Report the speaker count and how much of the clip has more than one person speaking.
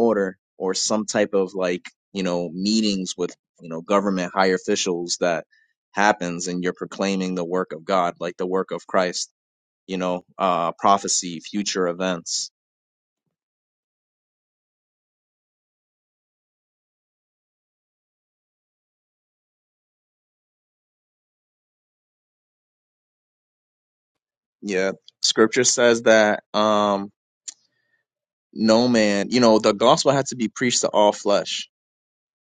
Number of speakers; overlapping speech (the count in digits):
1, no overlap